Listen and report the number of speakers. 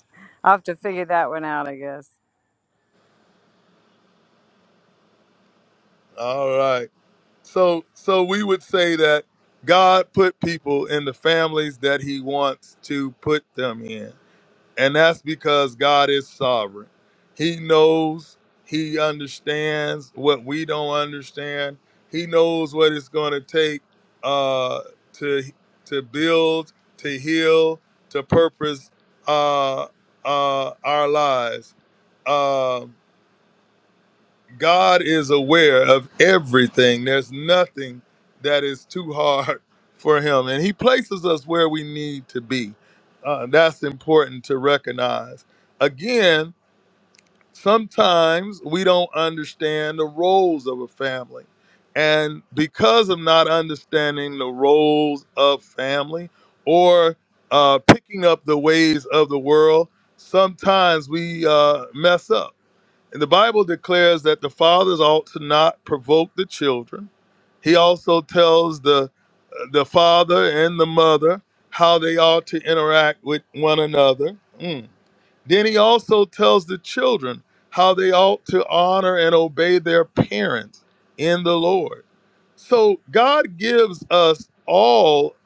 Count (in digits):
2